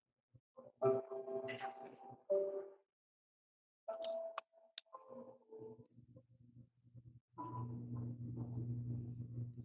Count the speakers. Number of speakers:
0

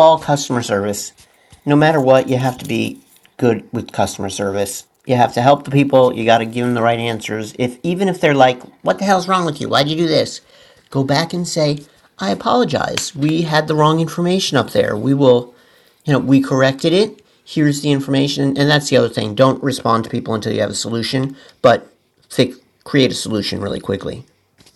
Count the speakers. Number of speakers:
1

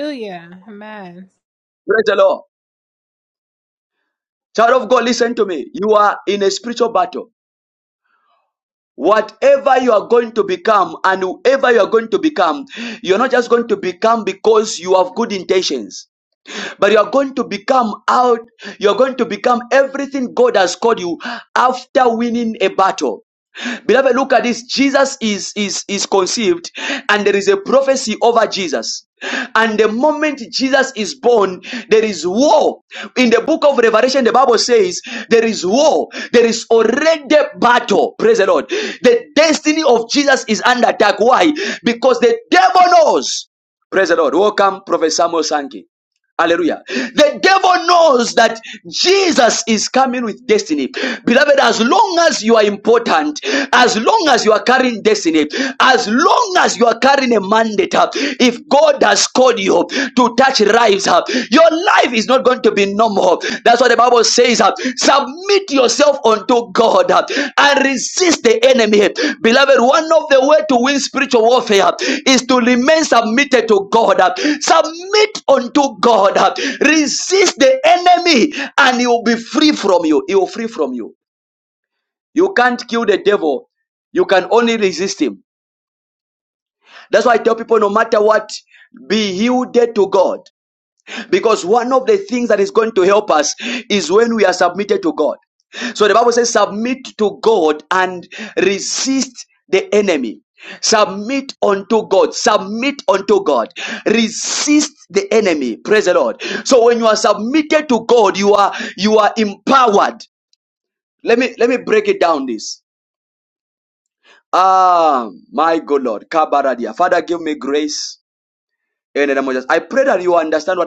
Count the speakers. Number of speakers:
2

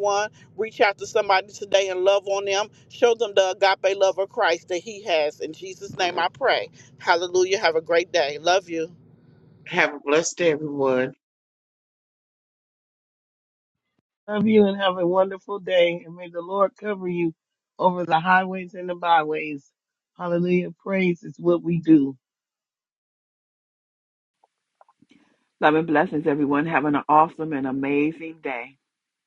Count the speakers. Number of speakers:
4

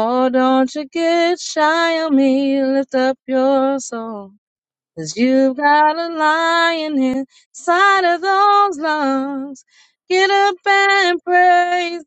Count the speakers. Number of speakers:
1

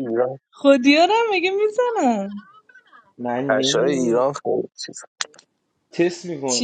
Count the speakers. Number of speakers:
3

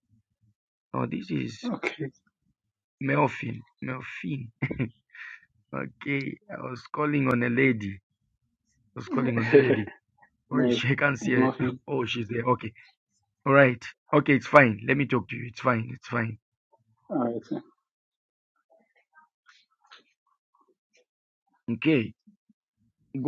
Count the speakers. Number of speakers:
2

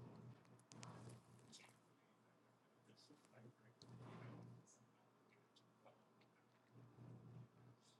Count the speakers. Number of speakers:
0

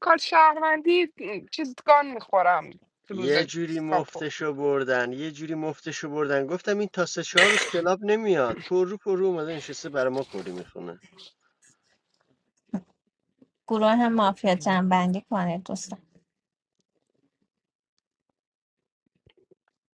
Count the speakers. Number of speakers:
3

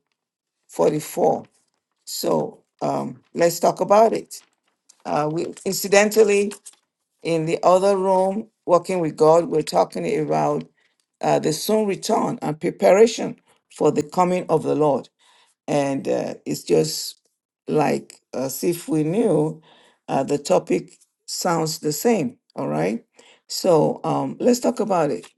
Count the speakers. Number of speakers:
1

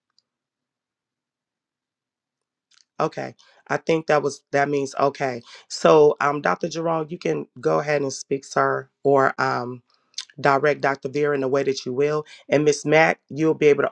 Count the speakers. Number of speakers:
1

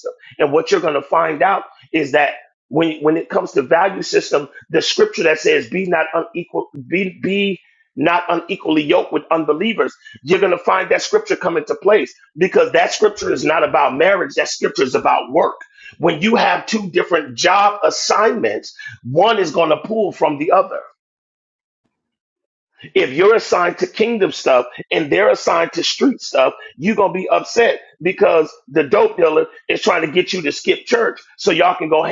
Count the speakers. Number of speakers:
1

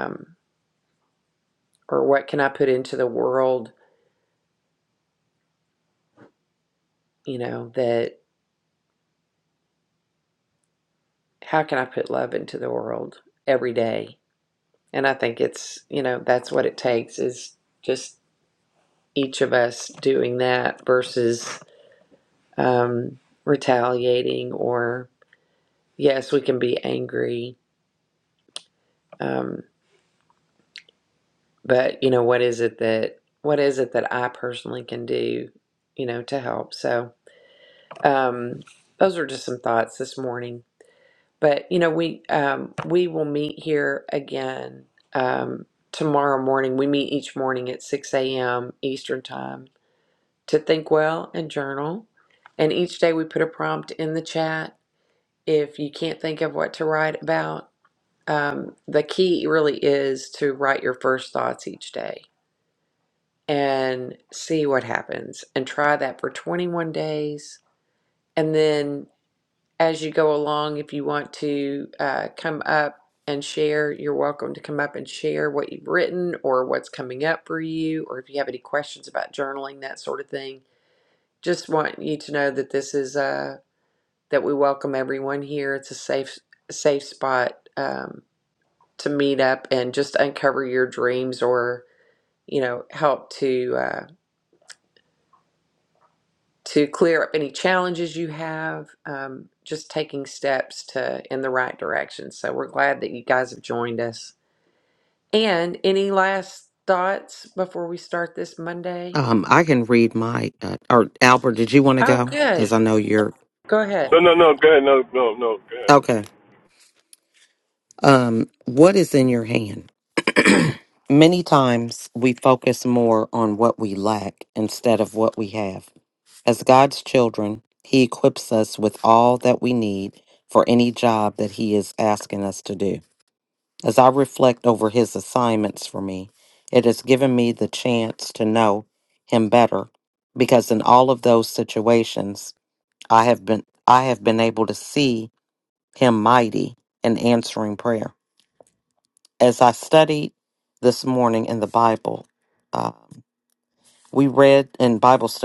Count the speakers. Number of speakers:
3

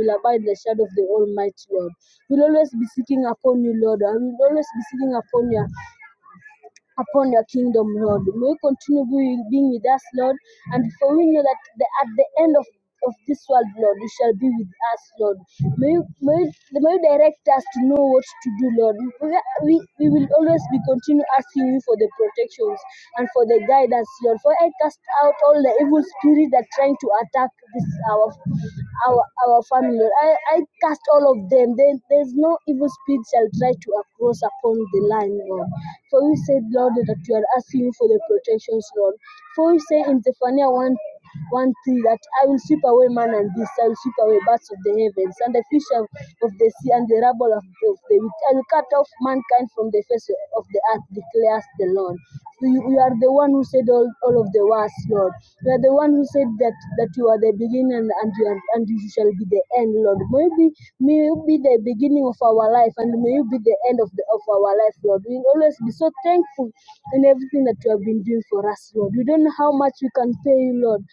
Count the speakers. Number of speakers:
1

